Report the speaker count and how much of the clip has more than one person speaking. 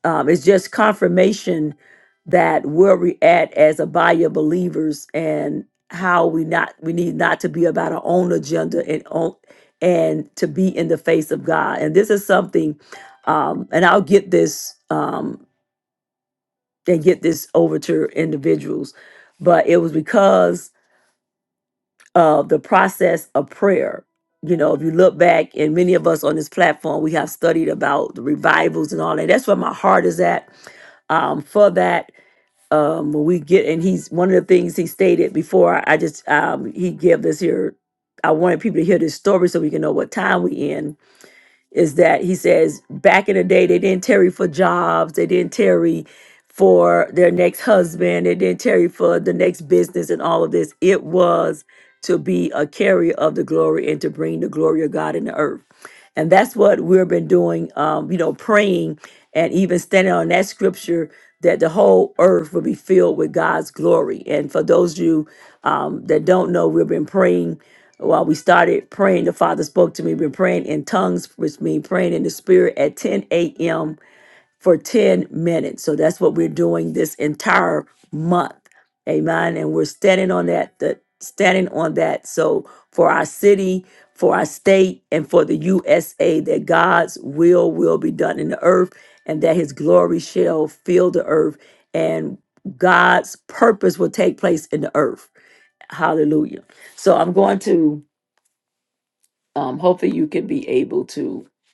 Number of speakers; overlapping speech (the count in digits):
1, no overlap